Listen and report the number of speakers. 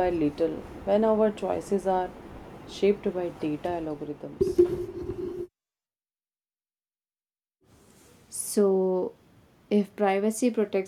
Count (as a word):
two